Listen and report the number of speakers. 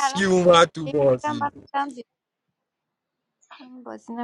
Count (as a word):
two